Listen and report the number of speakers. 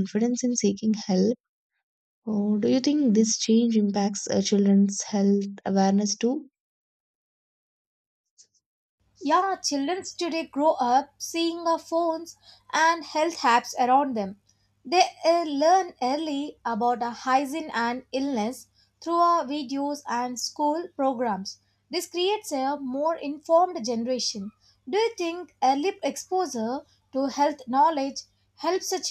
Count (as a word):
two